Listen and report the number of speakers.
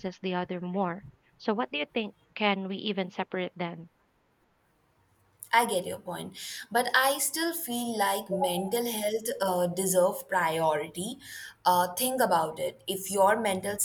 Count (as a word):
two